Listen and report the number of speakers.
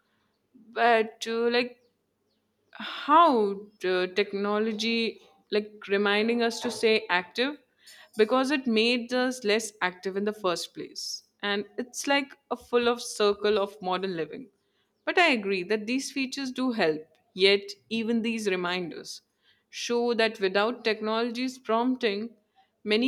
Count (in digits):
1